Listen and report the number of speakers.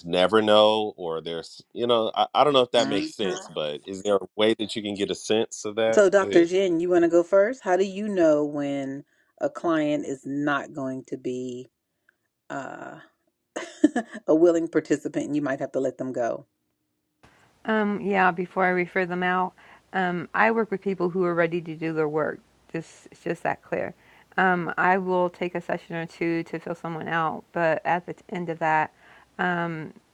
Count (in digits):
3